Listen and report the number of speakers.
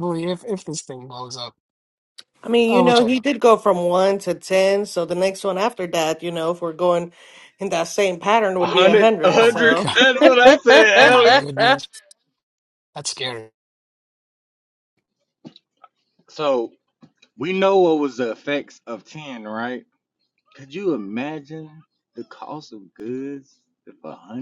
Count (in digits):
3